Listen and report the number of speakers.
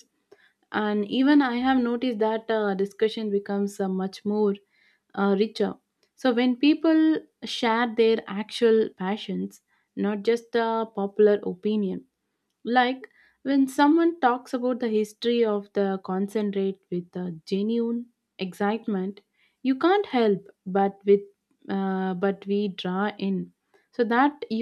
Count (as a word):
one